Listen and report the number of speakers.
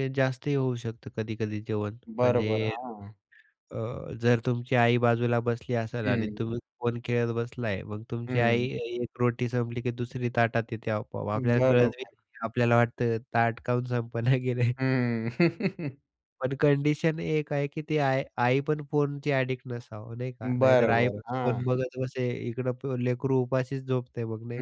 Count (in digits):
2